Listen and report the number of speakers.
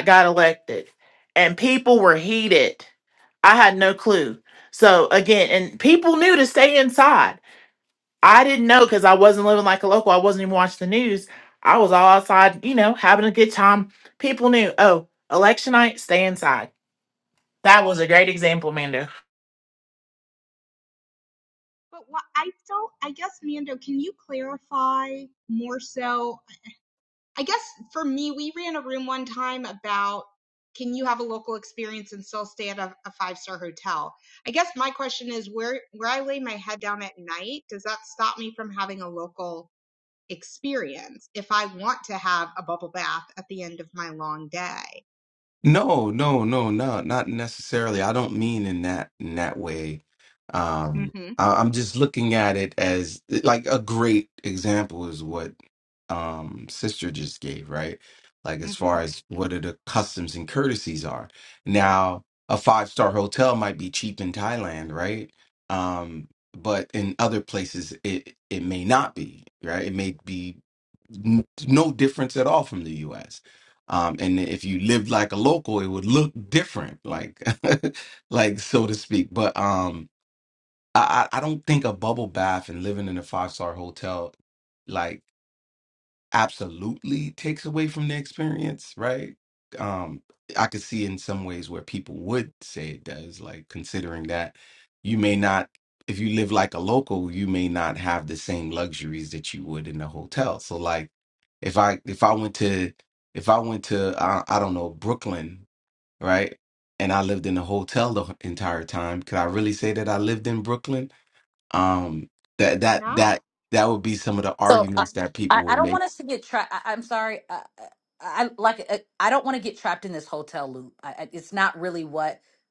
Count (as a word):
four